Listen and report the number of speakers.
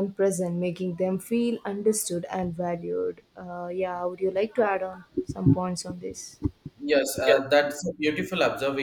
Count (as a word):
two